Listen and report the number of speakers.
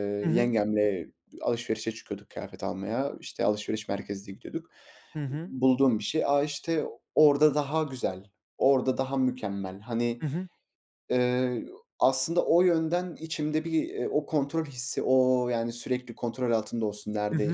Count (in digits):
2